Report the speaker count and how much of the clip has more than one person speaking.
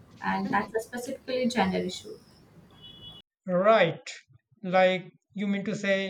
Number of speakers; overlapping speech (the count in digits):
2, no overlap